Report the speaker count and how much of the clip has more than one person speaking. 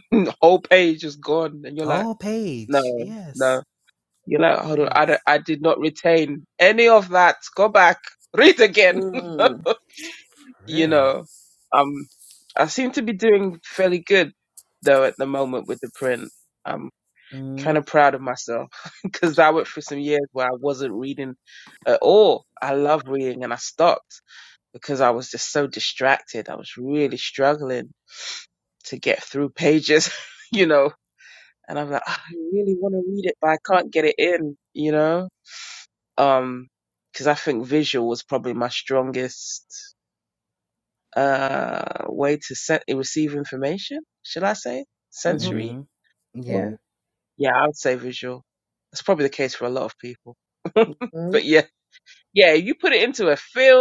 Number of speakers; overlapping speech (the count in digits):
3, about 3%